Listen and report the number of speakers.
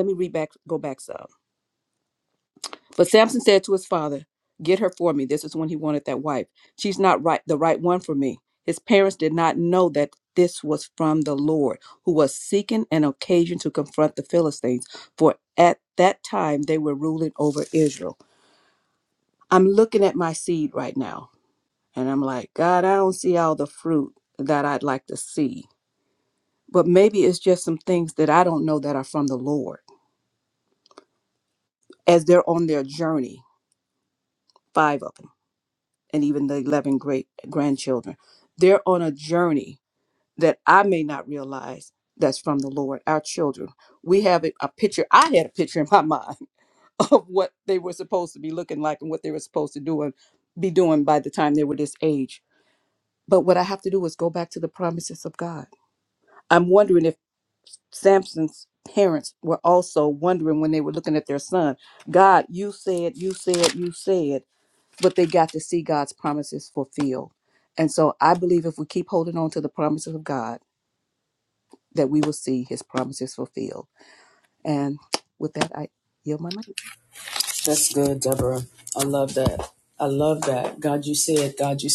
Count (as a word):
two